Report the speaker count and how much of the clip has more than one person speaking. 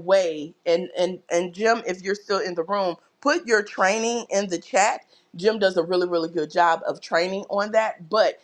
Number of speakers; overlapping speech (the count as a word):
one, no overlap